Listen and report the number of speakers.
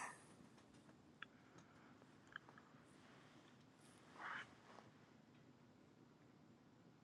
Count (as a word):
zero